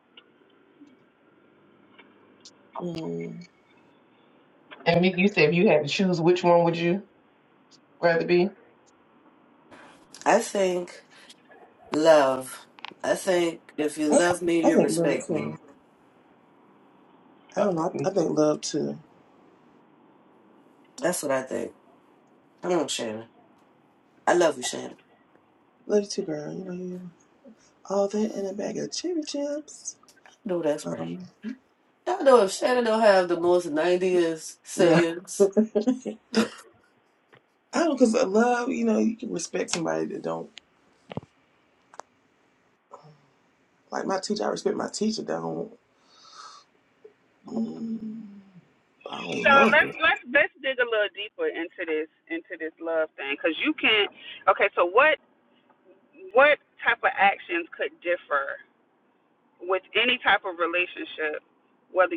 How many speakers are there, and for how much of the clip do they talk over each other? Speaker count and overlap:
four, about 5%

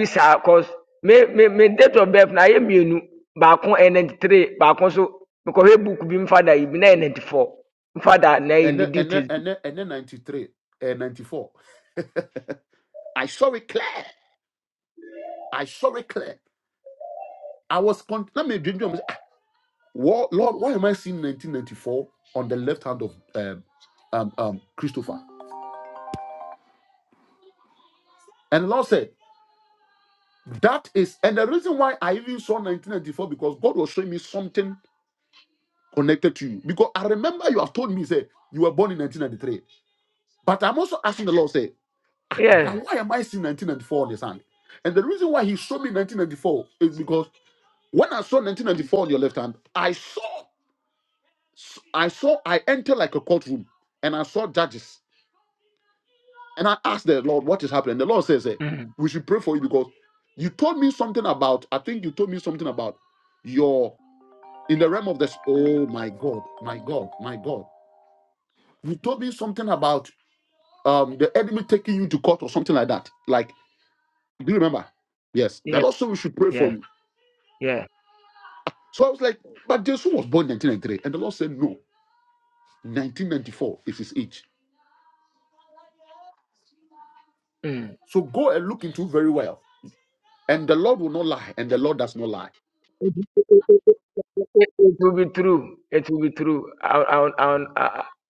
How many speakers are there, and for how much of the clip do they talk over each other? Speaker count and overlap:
two, about 2%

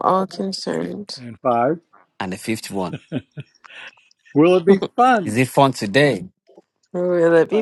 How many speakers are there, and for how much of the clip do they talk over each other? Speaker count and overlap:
three, about 3%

